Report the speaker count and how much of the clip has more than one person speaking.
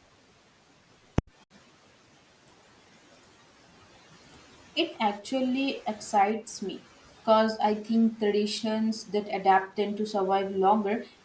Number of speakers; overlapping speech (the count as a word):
one, no overlap